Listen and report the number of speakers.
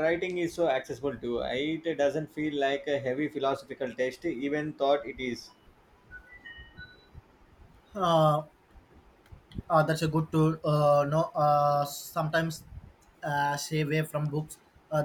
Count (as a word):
two